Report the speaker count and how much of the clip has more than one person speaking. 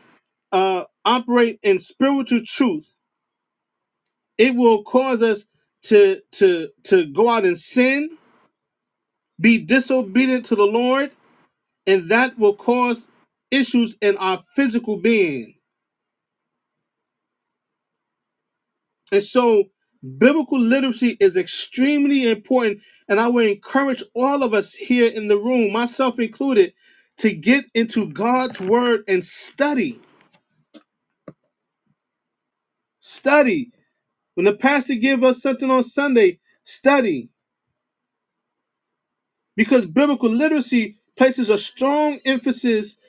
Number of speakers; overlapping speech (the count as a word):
one, no overlap